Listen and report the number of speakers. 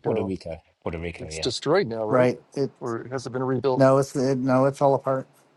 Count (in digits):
3